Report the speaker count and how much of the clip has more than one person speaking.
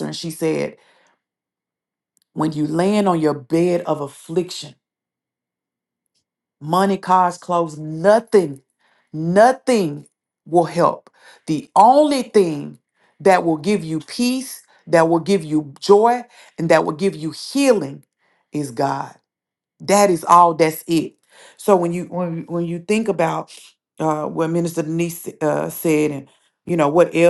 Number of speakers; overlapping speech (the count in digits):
1, no overlap